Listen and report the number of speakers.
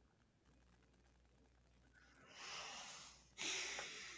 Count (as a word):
zero